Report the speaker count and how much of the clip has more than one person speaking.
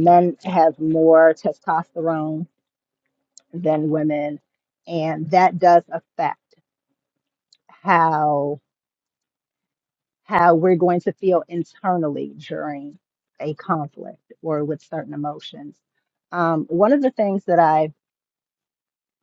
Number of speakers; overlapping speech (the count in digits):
1, no overlap